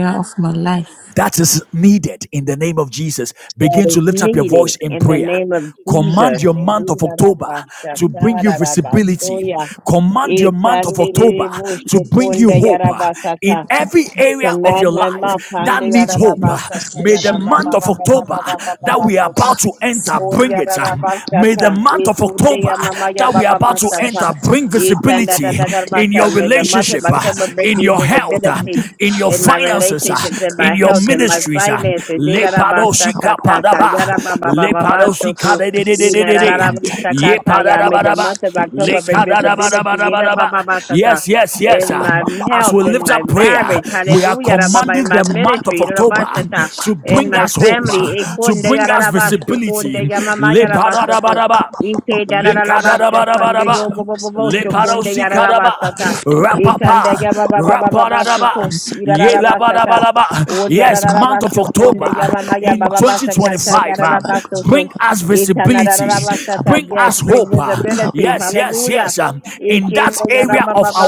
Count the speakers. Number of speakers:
3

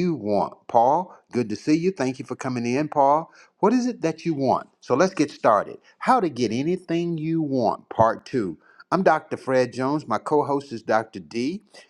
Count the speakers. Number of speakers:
1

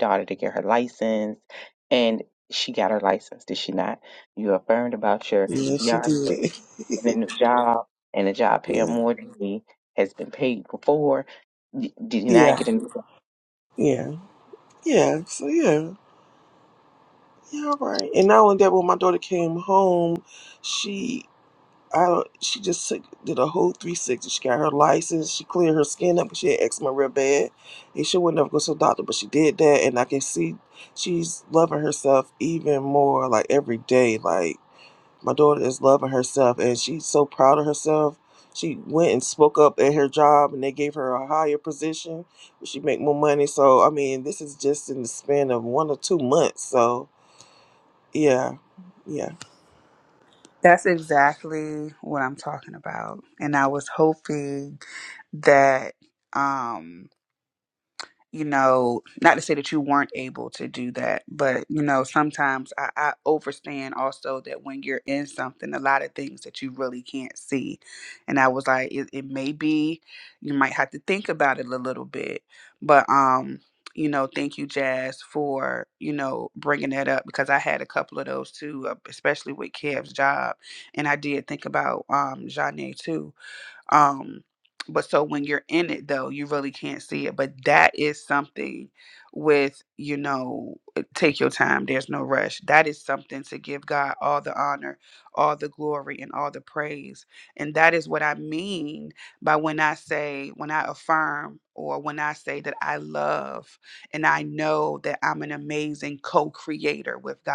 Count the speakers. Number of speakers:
3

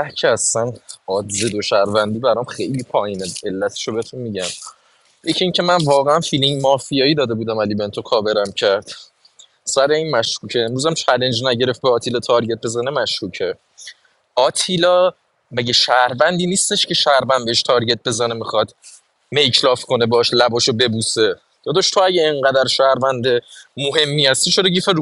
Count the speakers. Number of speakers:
1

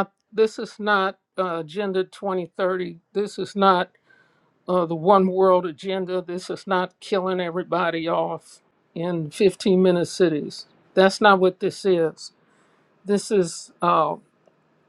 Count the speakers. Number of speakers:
1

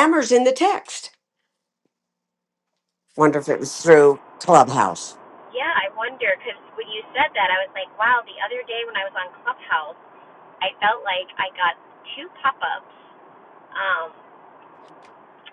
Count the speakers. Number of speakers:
2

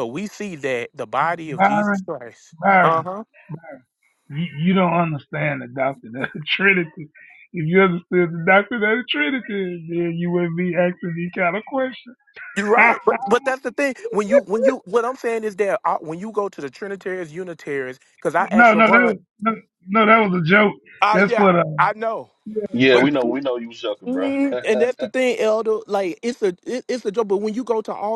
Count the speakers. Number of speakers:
3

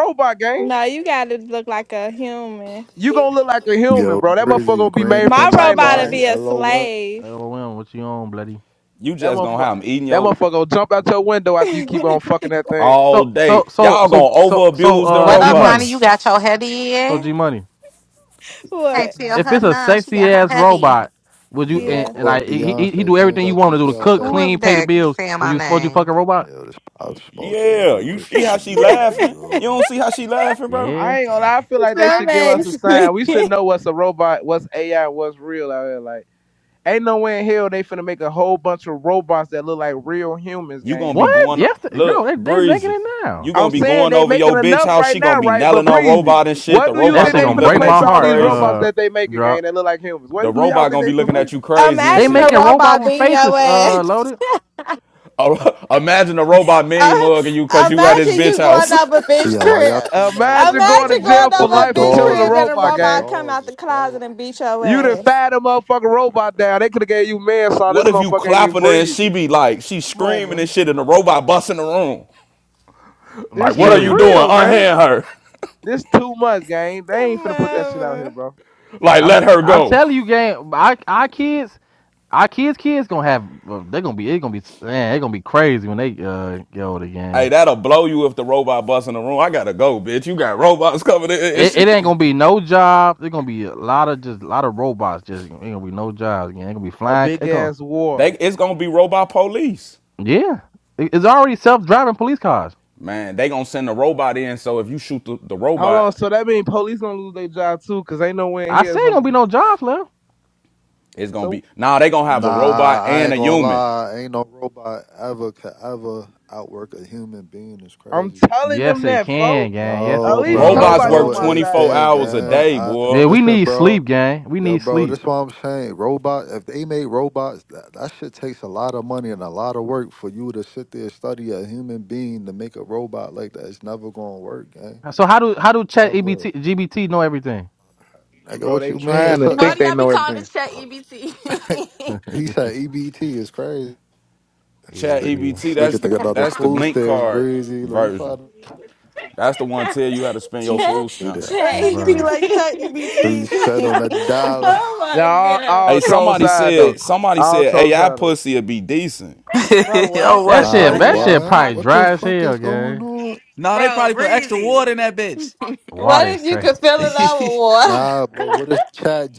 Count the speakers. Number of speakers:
8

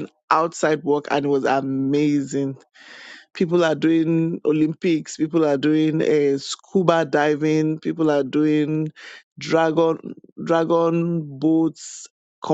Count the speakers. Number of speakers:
1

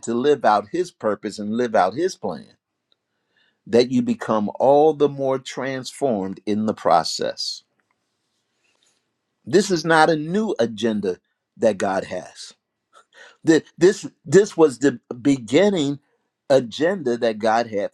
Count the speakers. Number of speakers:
1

